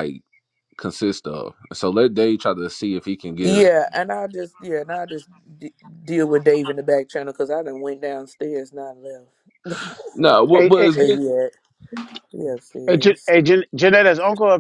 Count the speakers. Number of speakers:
3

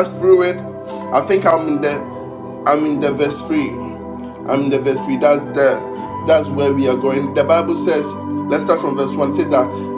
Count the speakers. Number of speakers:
1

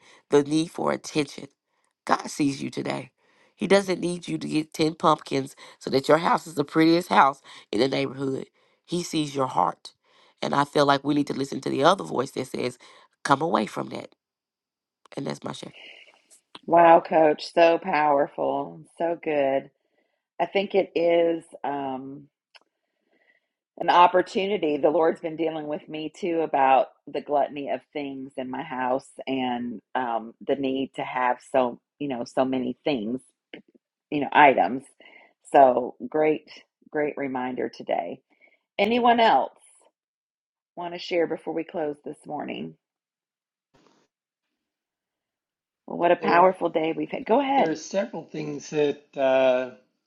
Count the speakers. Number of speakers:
3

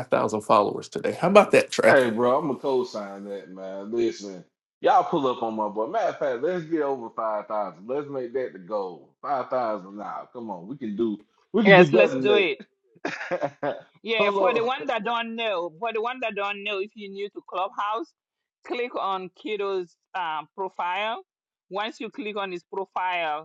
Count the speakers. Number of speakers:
3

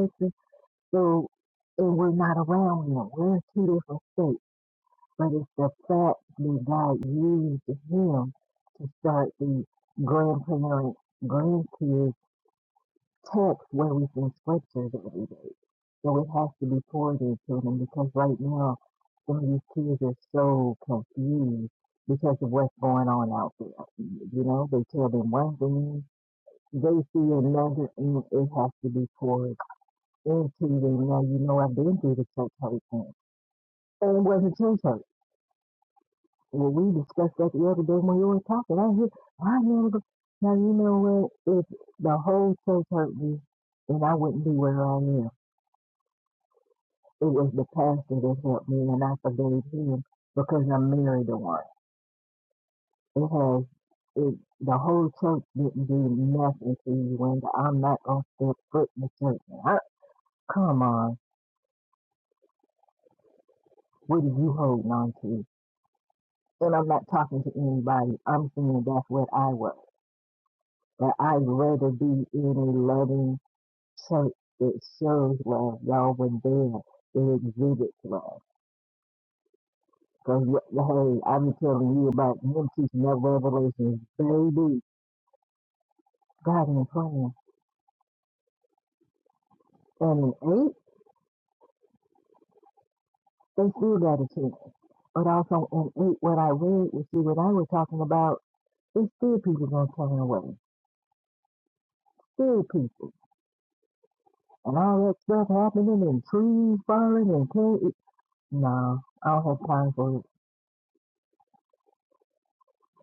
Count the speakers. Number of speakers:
1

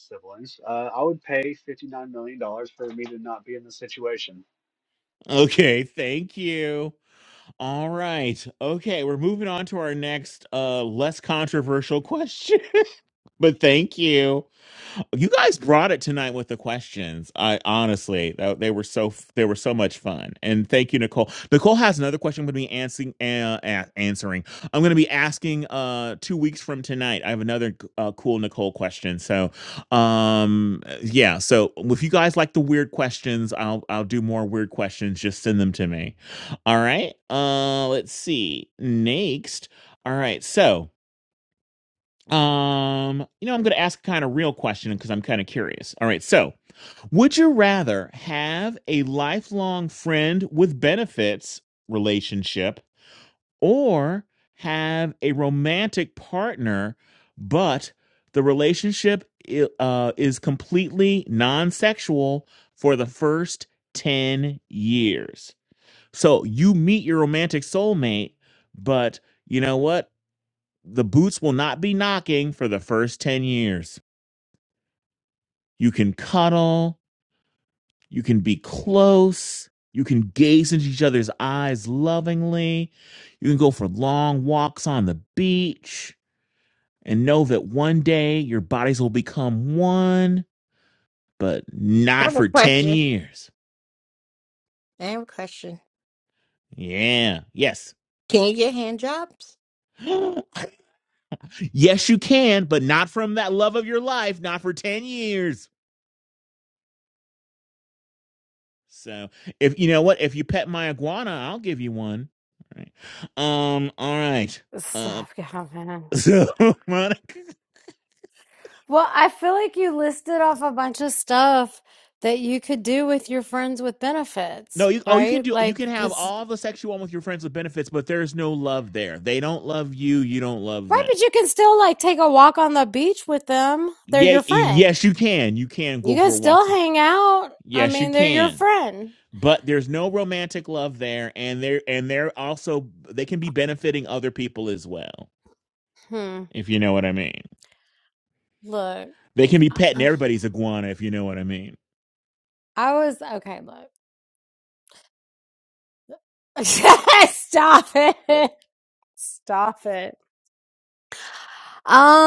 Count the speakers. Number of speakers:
4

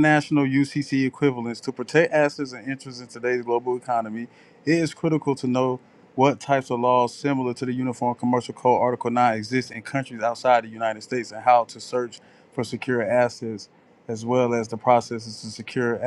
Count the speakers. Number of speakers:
1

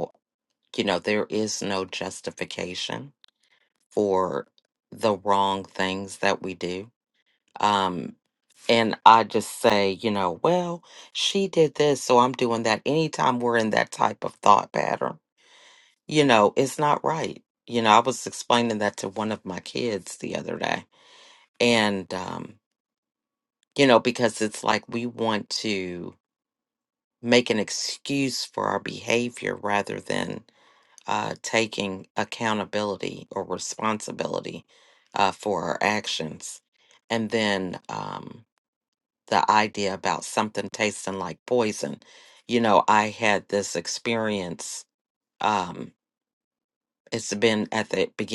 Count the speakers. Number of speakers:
1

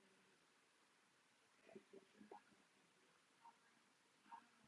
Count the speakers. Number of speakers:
0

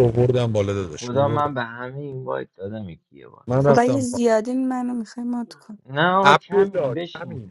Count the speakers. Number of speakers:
3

